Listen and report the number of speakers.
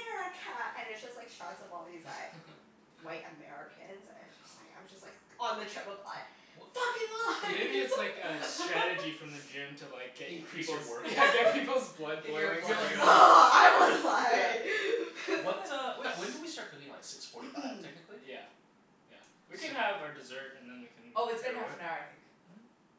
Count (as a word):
four